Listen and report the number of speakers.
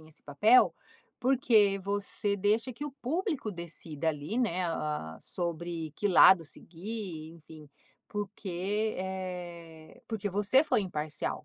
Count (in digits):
1